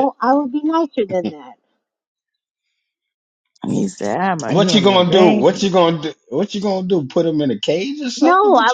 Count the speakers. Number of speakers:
3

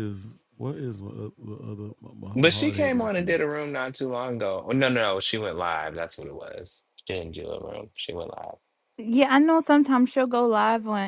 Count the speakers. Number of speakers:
3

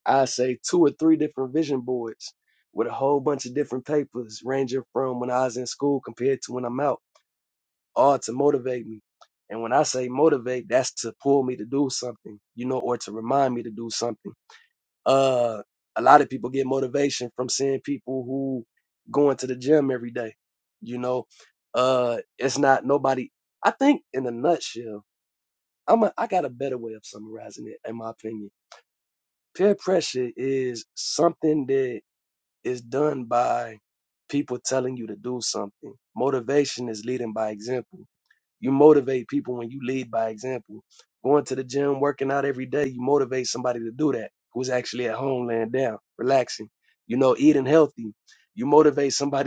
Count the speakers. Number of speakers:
1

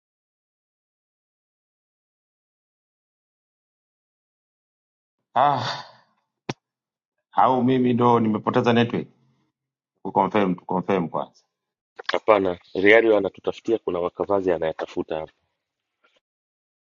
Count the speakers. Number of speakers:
2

